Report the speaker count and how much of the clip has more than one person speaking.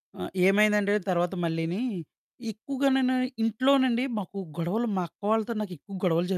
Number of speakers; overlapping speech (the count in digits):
1, no overlap